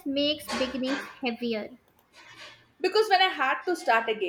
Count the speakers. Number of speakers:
2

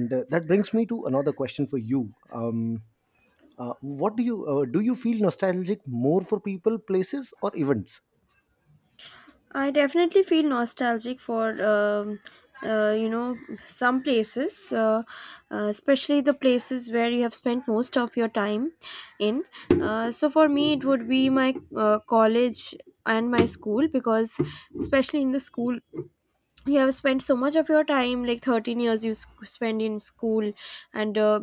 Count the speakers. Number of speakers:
2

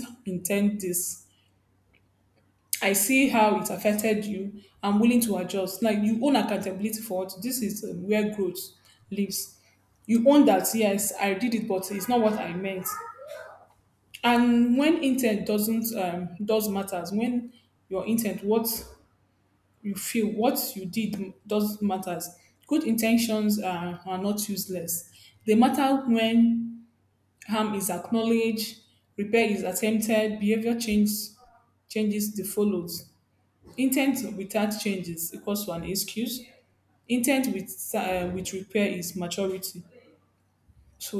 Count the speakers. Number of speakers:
1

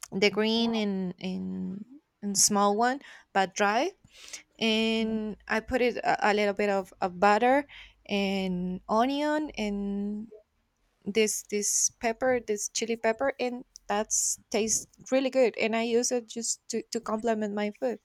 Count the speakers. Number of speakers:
1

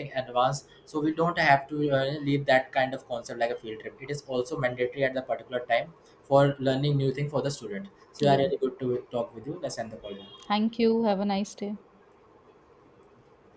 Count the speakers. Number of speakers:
2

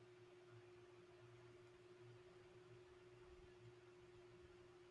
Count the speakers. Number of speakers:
0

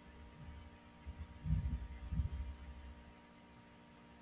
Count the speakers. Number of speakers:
0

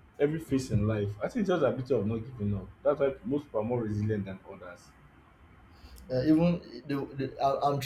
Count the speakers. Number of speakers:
2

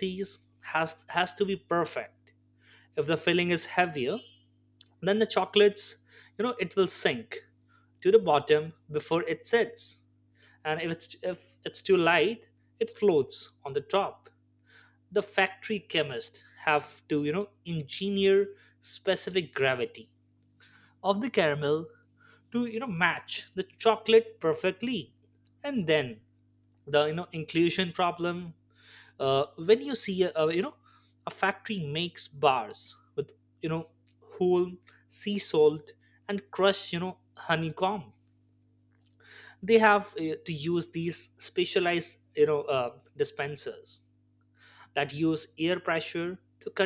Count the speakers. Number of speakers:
1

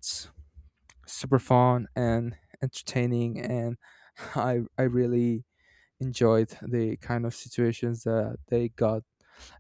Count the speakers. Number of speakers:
1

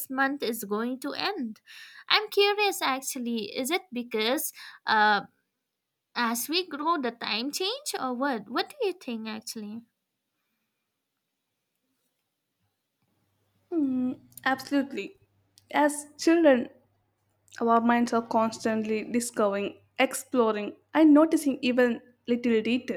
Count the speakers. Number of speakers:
2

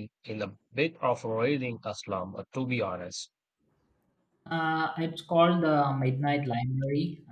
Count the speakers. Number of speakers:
2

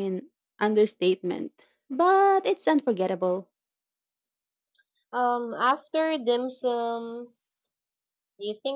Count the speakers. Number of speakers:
2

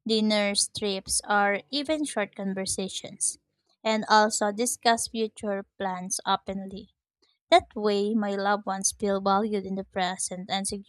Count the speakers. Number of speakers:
1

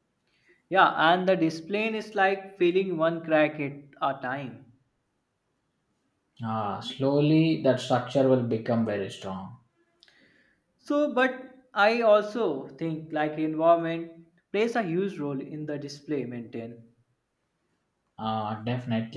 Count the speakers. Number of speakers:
2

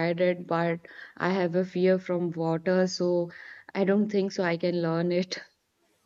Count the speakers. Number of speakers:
1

